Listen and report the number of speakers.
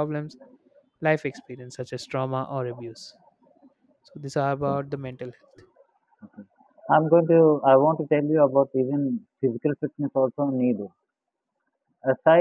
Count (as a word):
two